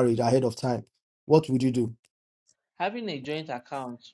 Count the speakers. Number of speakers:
two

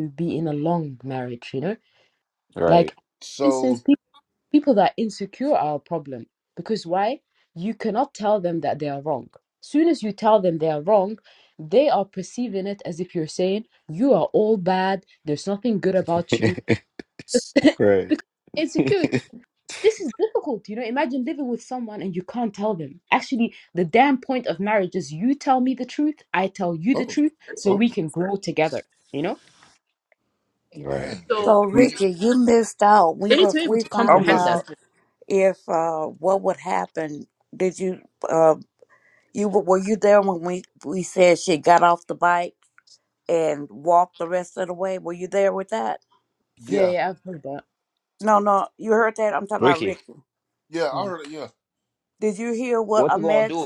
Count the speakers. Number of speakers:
four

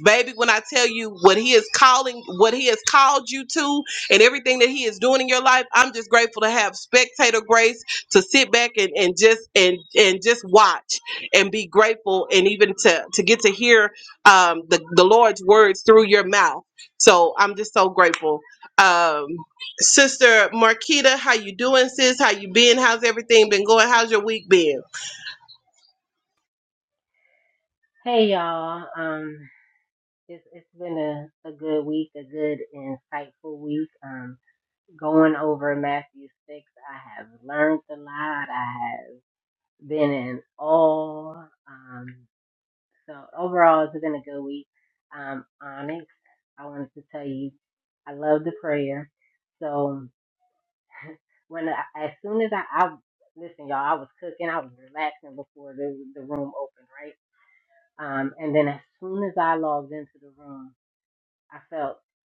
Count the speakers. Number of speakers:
two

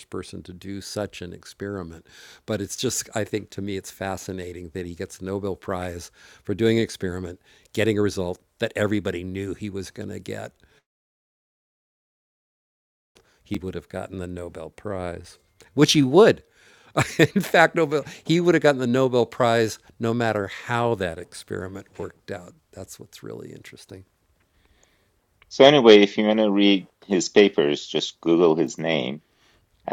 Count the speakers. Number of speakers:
two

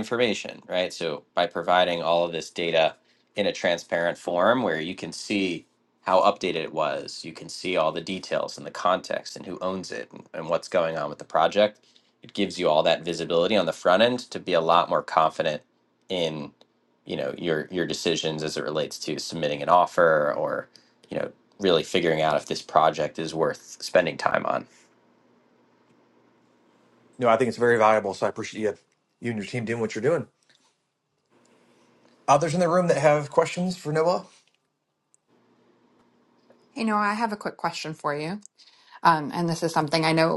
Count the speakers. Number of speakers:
three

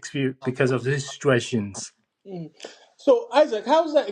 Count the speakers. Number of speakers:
two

